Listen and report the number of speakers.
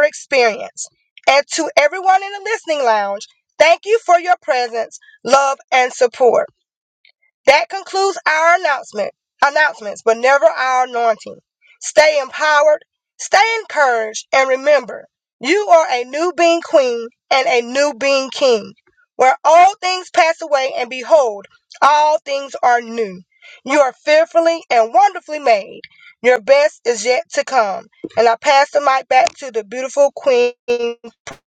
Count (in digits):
1